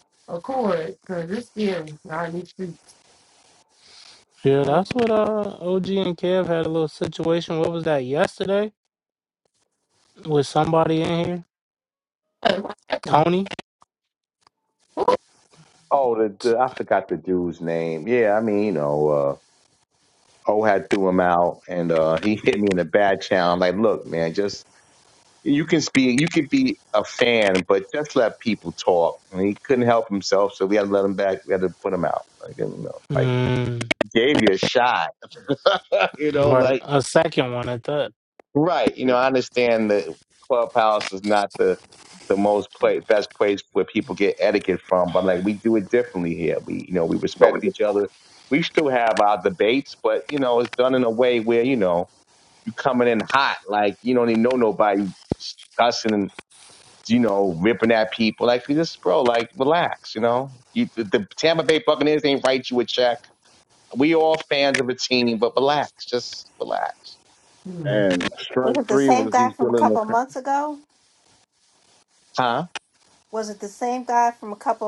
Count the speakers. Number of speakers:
five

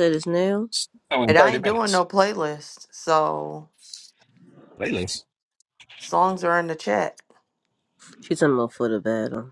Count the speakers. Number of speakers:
three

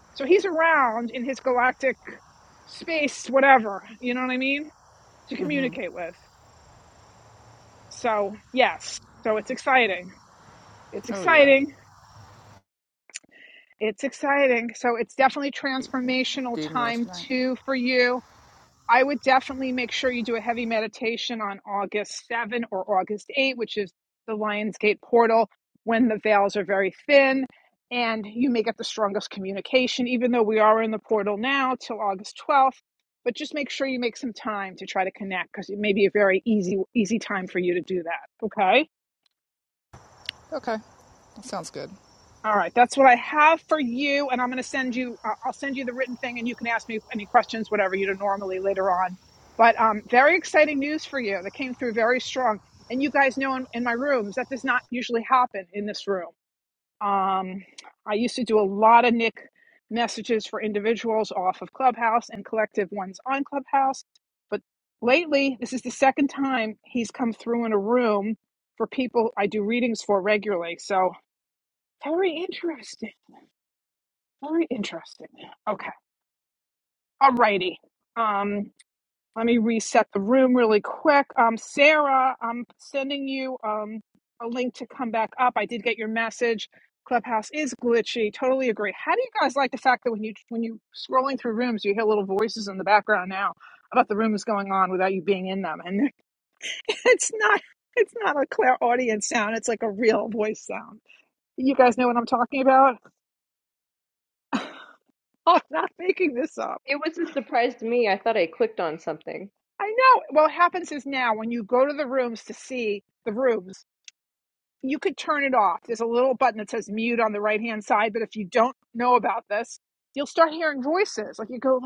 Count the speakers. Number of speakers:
three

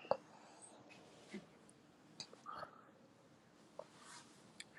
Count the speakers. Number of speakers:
zero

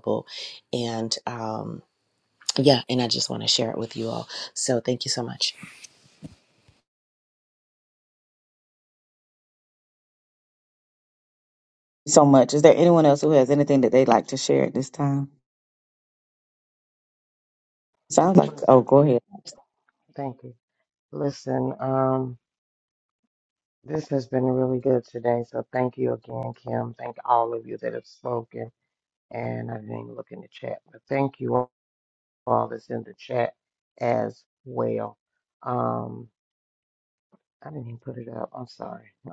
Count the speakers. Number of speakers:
three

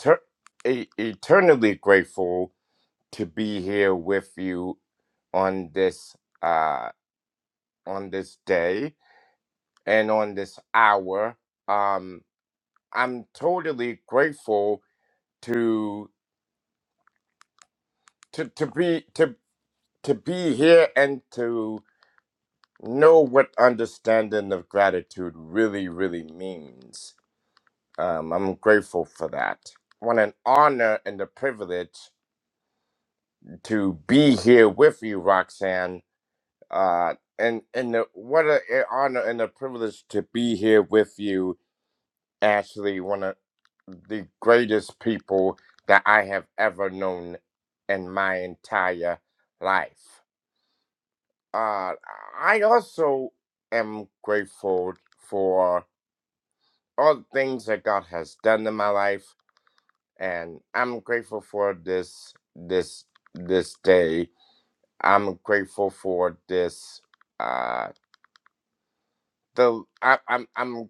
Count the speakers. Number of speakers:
one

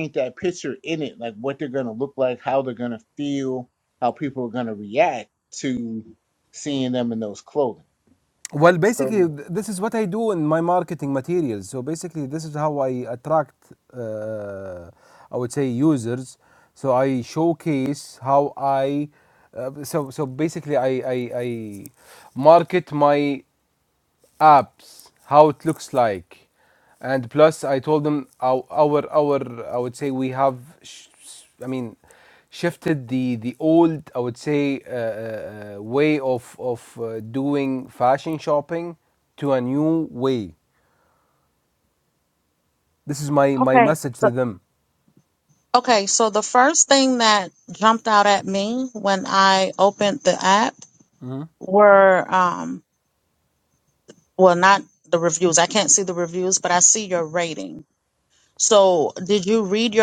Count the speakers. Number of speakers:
three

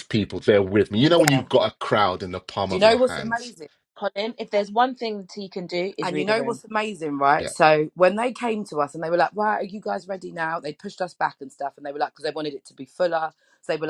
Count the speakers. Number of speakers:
three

